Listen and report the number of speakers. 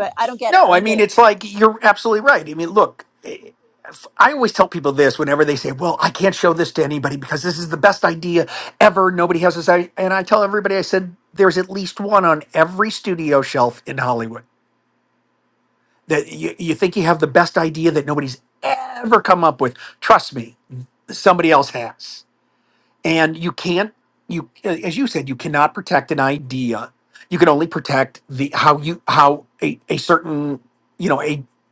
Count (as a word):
two